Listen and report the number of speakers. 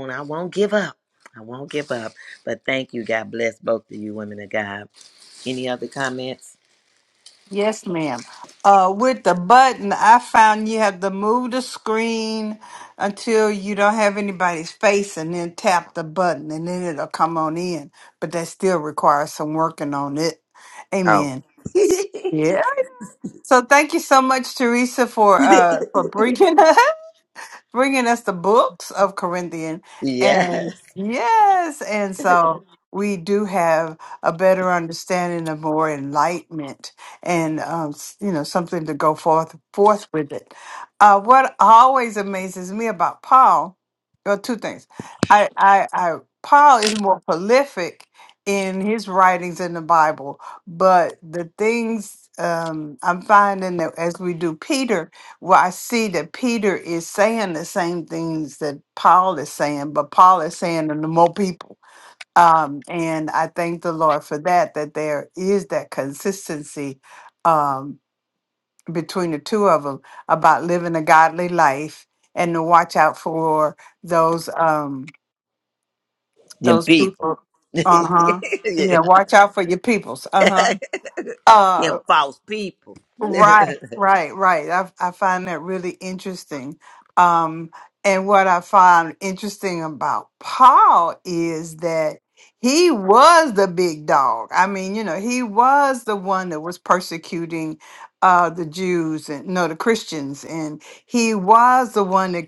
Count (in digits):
2